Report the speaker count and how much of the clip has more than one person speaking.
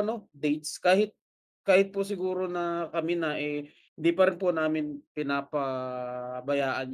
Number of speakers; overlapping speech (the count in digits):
1, no overlap